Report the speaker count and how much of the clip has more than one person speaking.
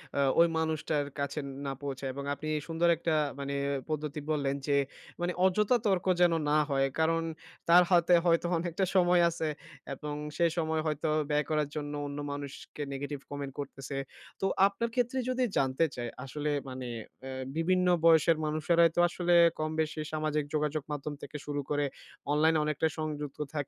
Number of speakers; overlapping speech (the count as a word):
one, no overlap